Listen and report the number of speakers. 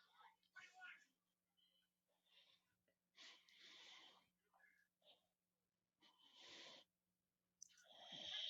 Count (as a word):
zero